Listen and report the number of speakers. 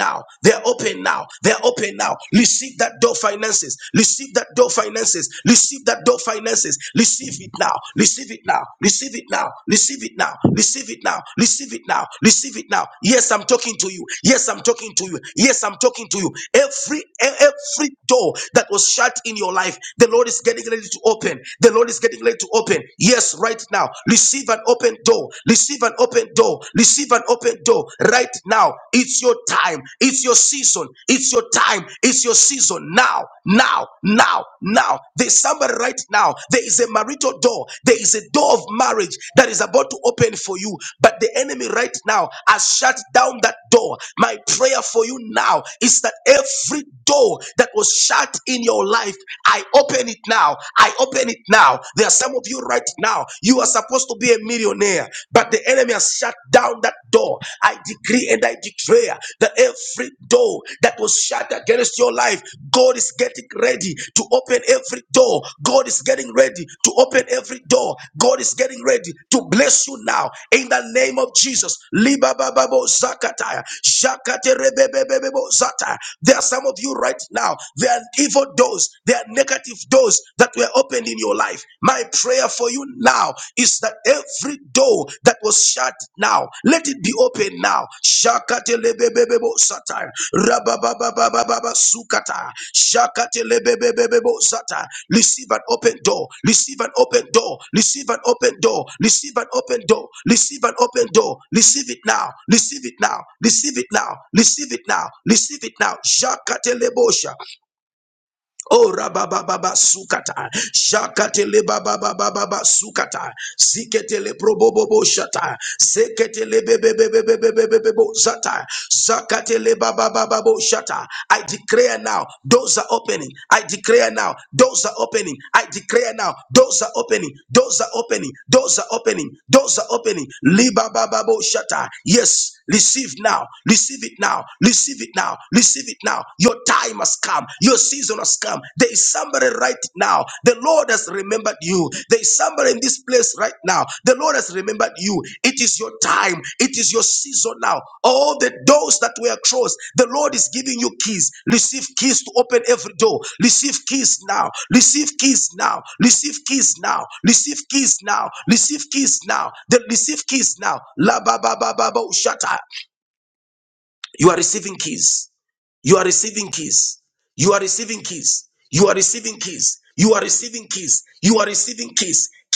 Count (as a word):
one